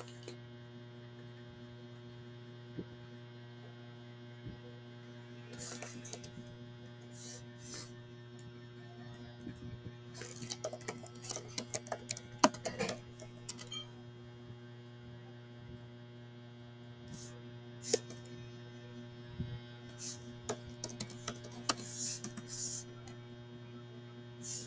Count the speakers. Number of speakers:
zero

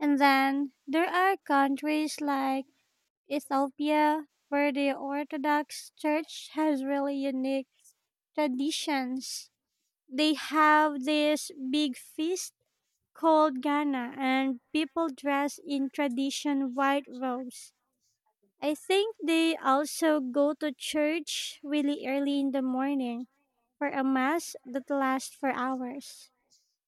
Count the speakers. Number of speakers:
one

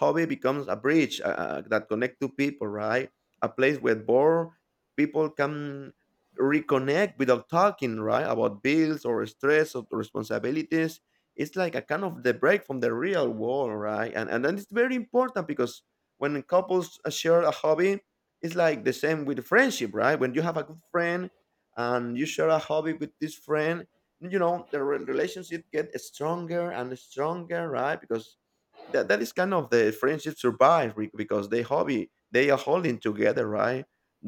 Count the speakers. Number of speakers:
one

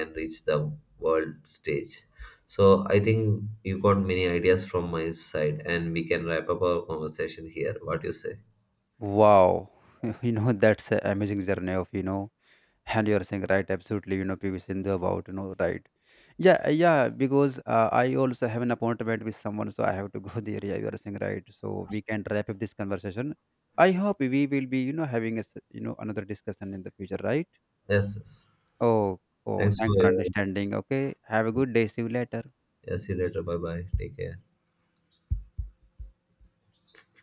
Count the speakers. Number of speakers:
two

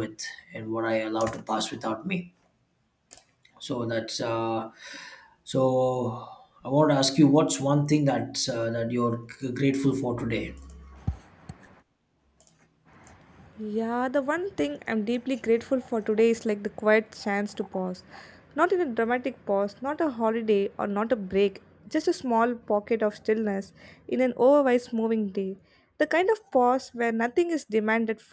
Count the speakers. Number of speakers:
two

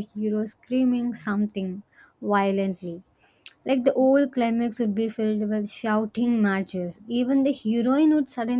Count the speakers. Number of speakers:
one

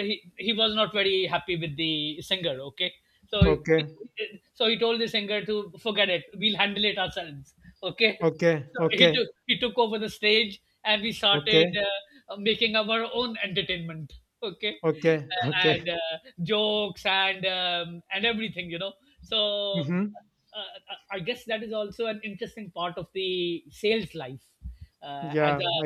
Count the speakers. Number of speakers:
two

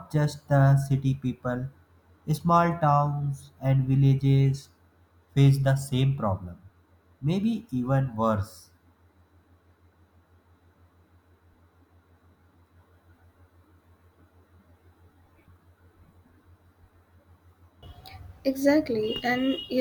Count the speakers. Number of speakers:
two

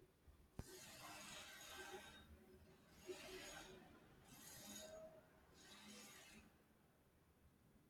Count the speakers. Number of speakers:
zero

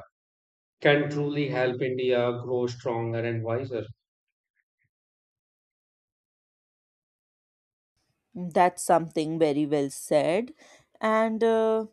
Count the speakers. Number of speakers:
two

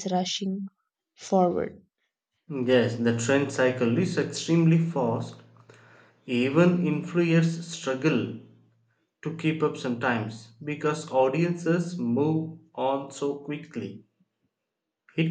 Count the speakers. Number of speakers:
two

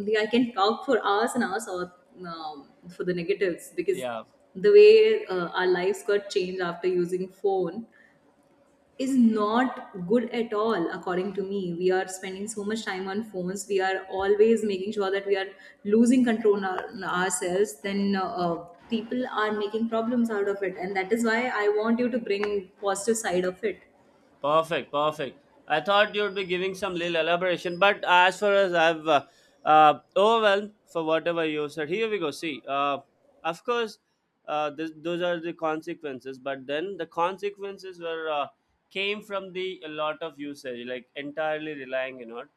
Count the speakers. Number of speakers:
two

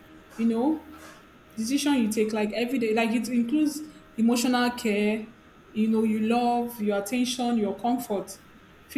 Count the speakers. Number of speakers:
one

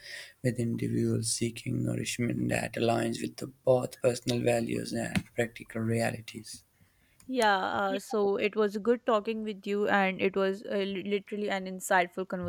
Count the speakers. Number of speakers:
two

